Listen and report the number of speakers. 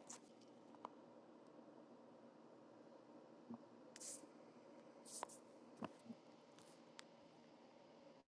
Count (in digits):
0